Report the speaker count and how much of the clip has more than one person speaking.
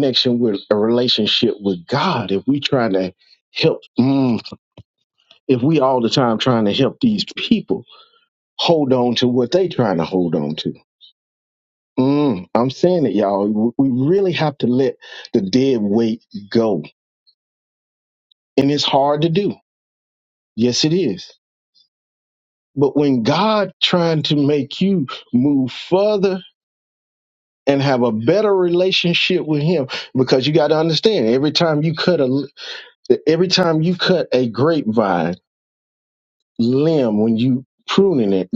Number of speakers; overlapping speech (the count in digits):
1, no overlap